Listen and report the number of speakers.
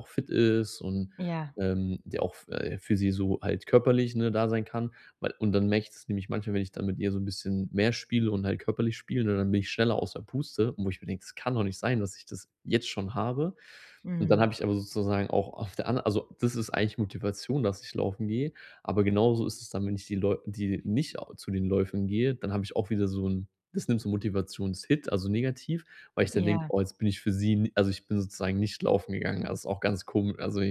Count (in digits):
2